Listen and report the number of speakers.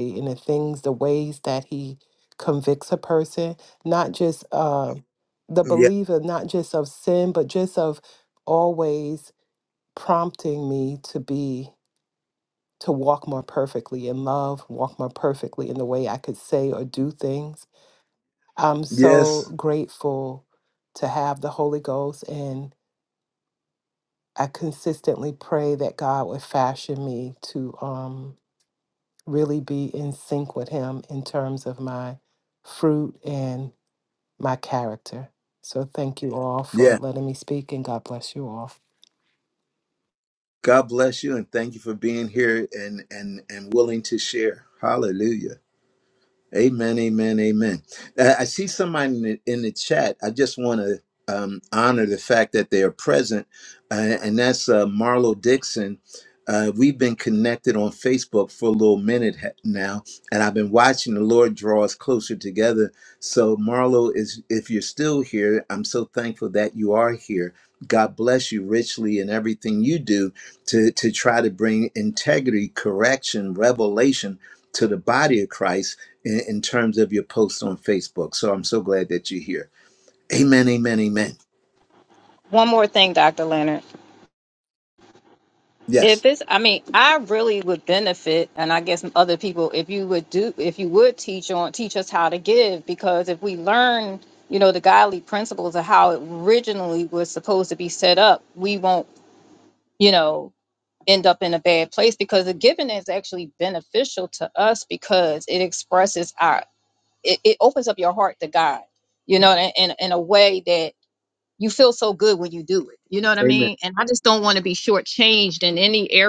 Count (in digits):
3